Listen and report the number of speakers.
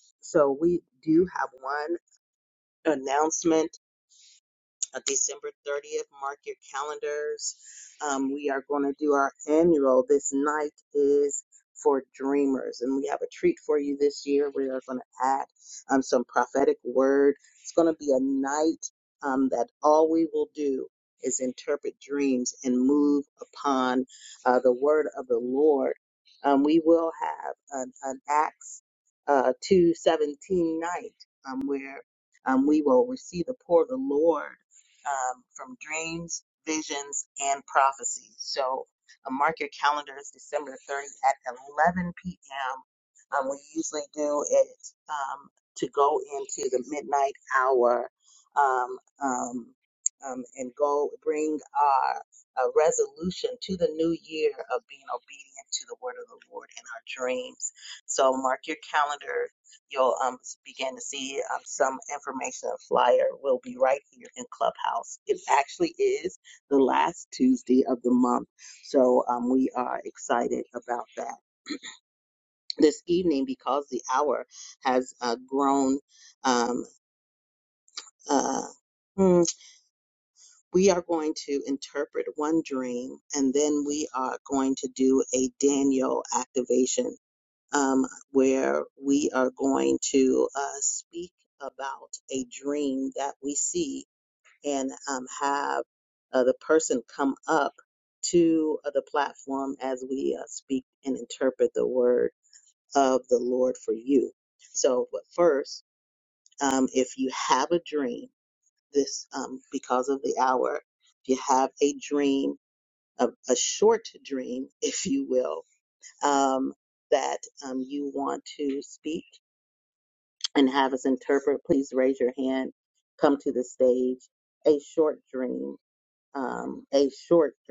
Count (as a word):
one